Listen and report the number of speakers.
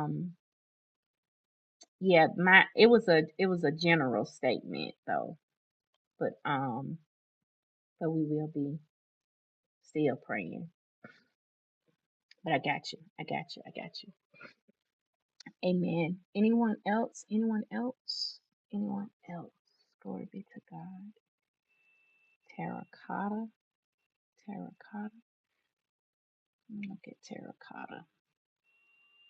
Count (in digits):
1